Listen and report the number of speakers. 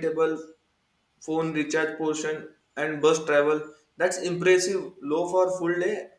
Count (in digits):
1